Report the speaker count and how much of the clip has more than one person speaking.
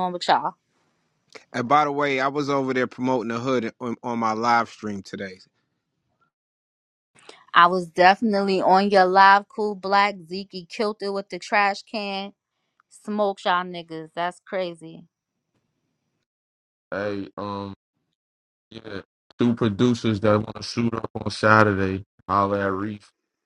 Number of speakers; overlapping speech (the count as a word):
three, no overlap